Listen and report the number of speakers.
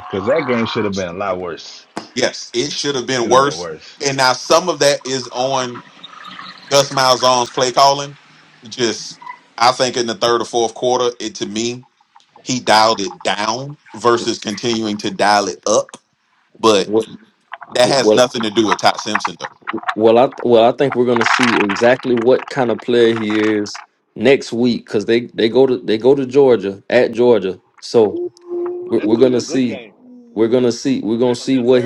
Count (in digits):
4